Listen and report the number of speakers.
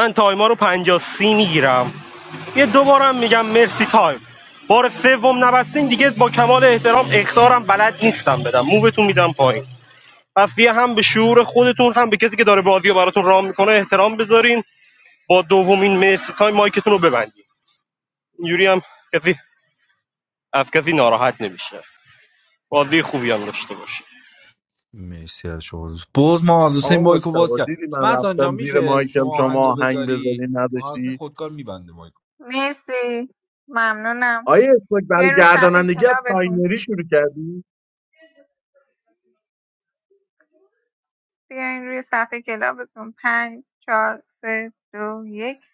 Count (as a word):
four